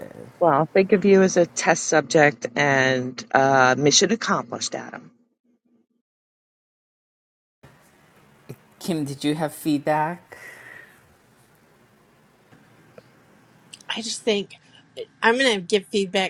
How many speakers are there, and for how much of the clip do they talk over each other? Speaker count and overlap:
3, no overlap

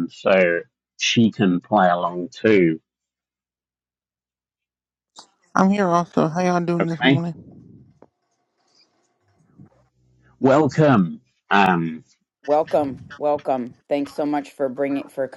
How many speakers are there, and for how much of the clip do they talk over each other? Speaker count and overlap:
3, about 3%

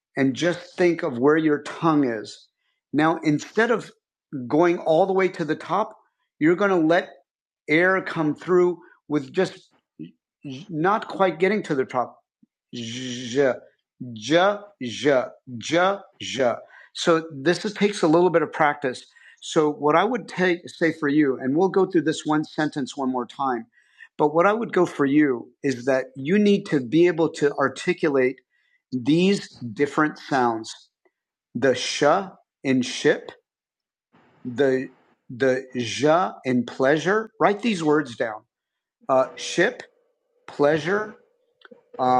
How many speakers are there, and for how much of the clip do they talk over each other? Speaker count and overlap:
1, no overlap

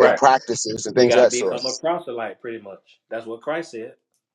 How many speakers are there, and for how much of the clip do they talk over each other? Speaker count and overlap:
2, about 20%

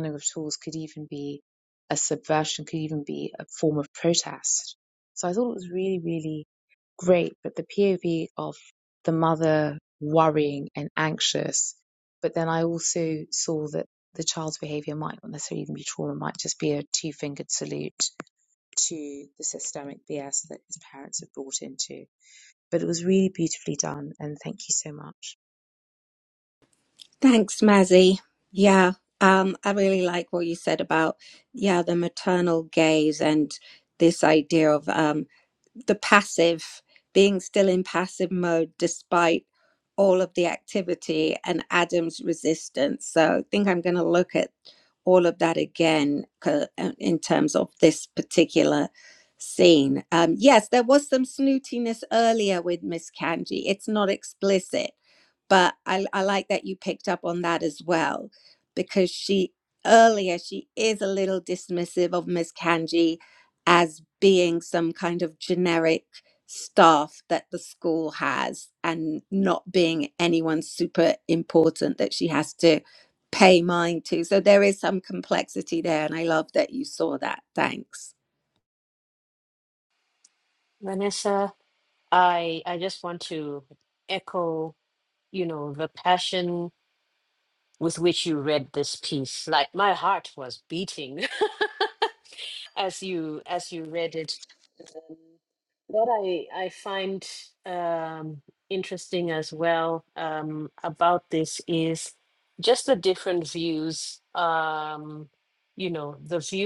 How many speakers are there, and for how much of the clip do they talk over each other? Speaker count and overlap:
3, no overlap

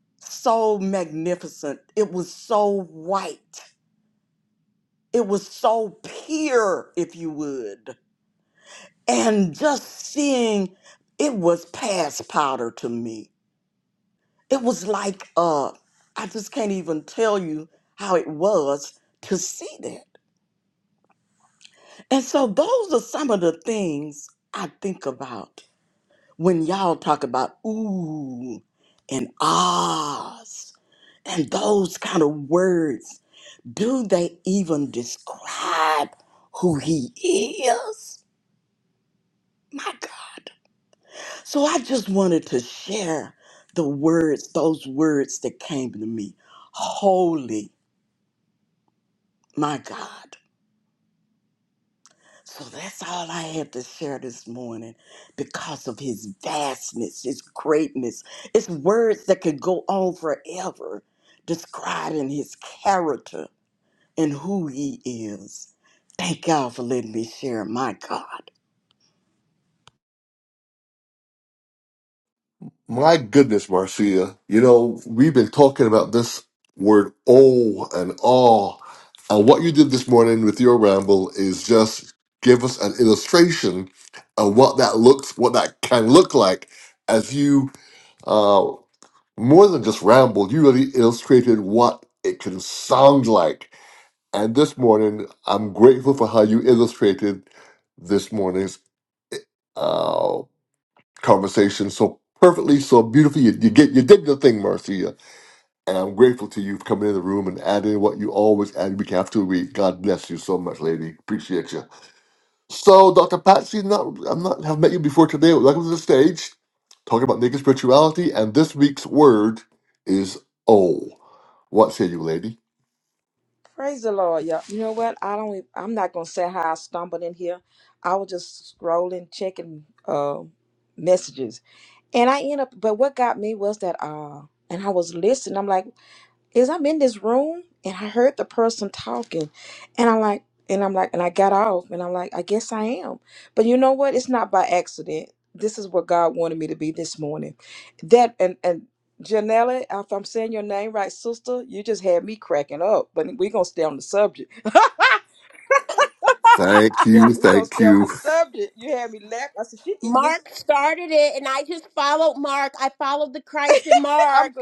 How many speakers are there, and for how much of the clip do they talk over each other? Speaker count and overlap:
4, about 1%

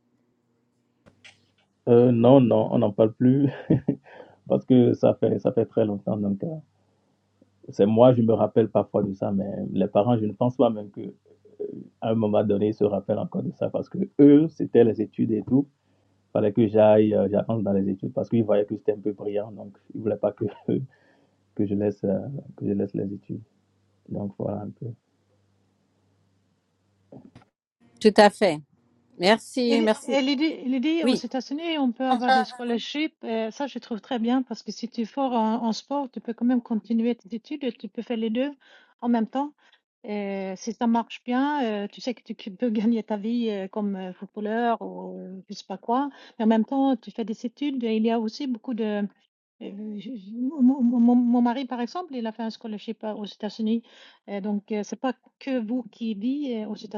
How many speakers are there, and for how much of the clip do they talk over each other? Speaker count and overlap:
3, about 1%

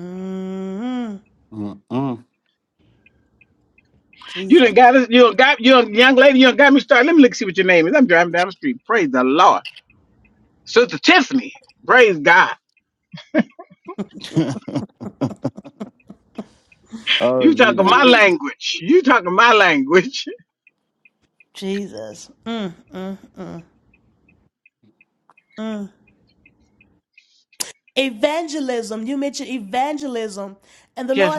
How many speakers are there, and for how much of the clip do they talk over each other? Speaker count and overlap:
3, about 4%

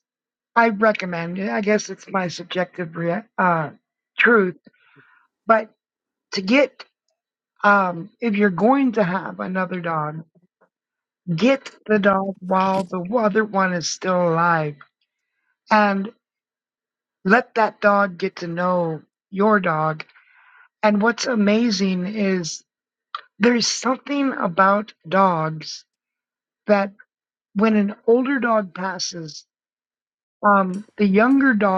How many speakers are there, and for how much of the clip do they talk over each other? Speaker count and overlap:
1, no overlap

